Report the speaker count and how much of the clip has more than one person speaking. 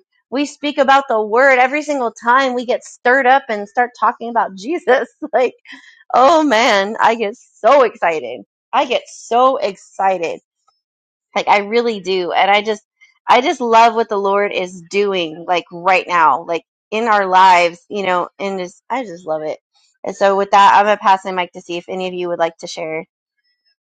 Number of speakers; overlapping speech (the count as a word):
one, no overlap